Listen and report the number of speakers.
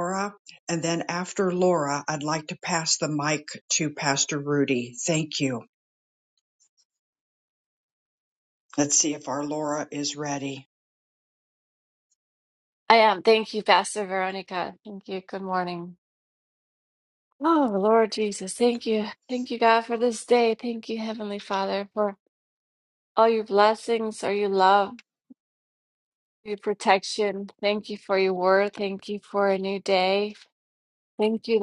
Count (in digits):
2